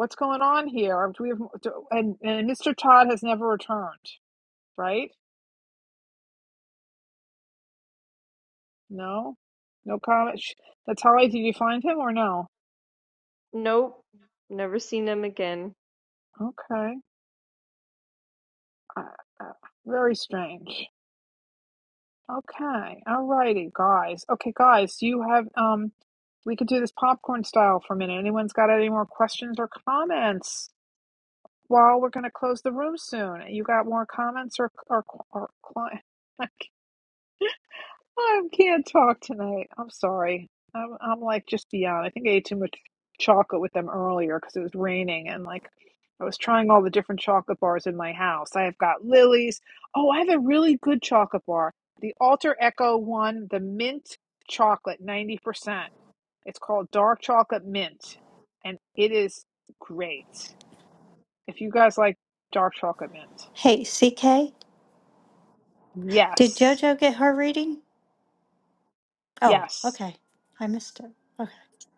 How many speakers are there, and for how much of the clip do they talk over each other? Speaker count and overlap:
three, under 1%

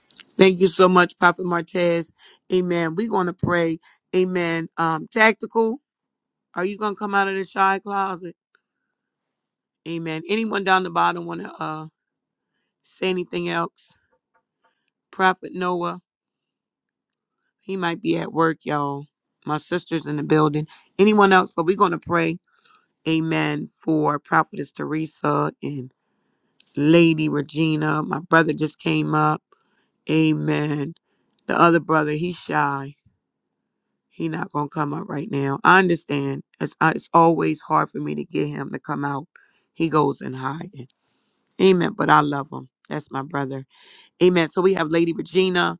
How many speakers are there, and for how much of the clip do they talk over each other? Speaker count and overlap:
one, no overlap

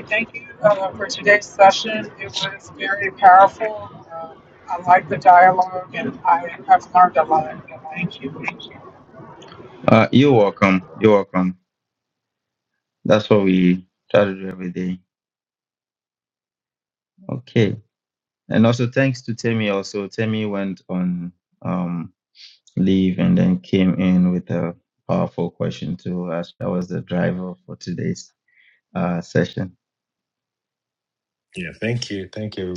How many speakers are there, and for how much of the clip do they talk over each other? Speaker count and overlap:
three, no overlap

